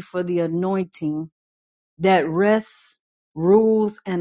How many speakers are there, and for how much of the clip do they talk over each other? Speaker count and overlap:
1, no overlap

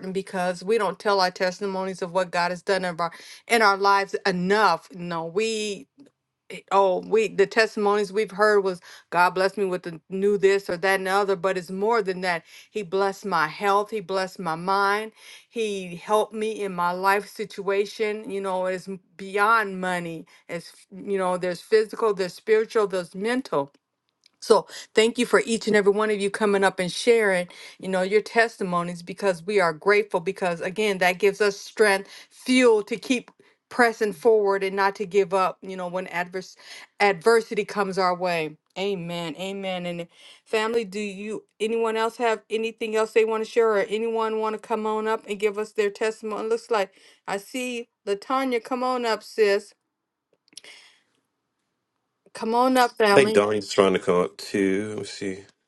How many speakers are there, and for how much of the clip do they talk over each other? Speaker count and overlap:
2, about 1%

